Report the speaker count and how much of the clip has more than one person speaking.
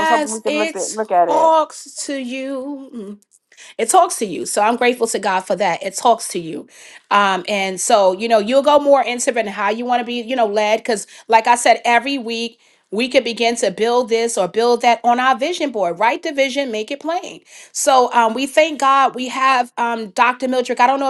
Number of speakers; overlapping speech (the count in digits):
2, about 5%